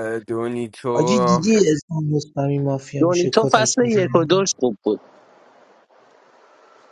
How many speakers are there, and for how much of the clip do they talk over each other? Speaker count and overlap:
three, about 18%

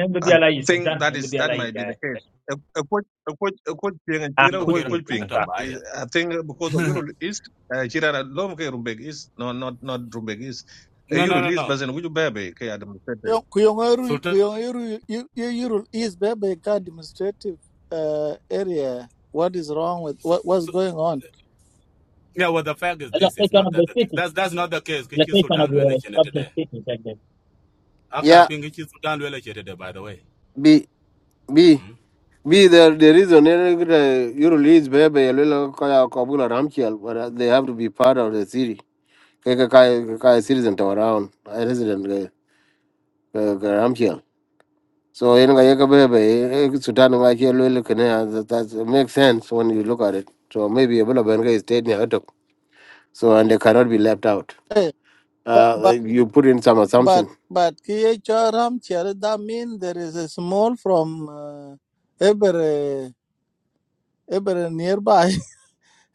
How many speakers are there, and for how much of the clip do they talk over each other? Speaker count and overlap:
five, about 11%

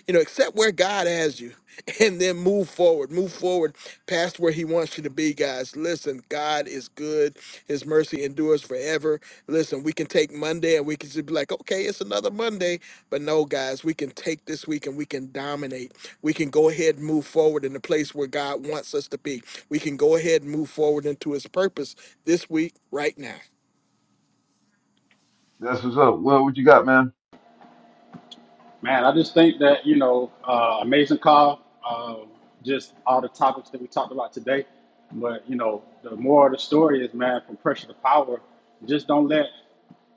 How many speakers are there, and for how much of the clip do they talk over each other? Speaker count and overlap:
three, no overlap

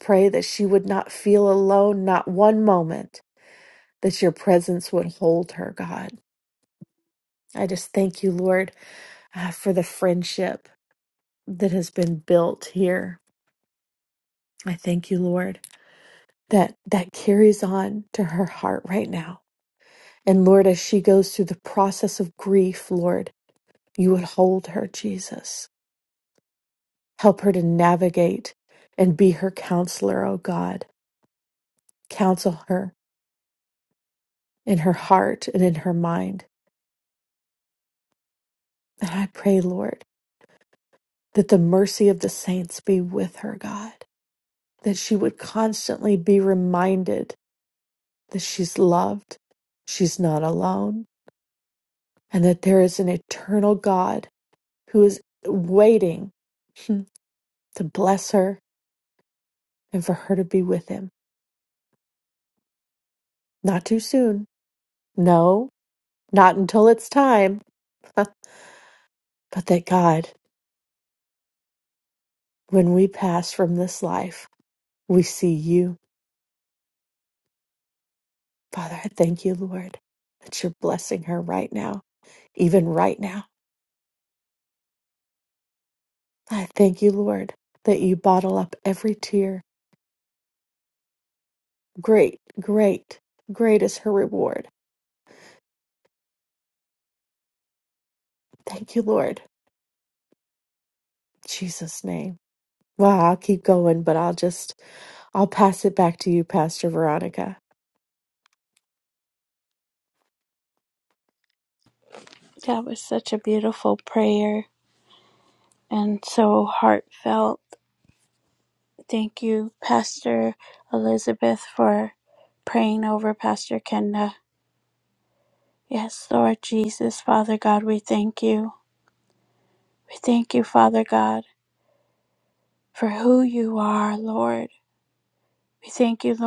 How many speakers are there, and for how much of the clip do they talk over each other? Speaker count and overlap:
two, no overlap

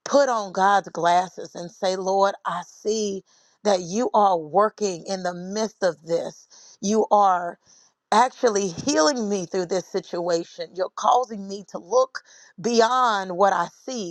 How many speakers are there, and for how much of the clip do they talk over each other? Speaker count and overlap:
one, no overlap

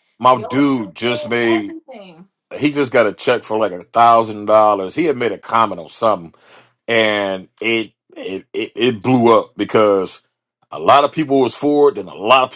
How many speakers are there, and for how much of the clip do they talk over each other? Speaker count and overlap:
two, about 8%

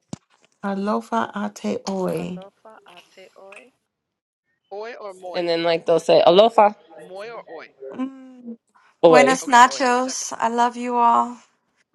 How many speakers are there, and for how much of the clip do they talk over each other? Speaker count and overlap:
four, about 12%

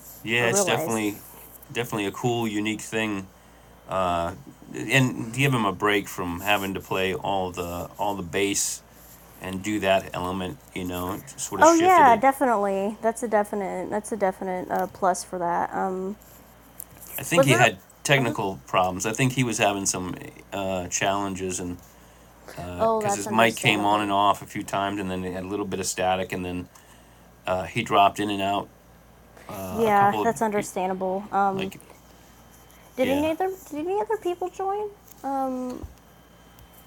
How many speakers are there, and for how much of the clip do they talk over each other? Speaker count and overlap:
two, about 12%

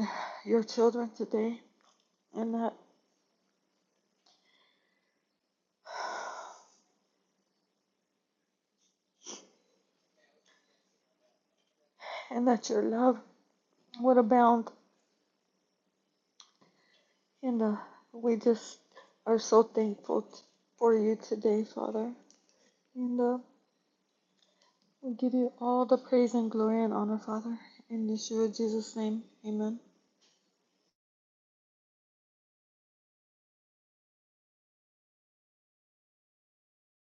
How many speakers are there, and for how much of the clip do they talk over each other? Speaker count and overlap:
one, no overlap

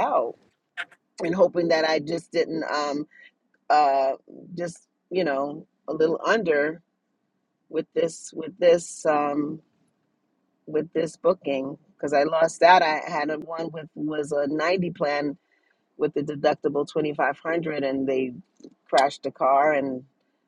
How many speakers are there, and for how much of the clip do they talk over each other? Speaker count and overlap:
one, no overlap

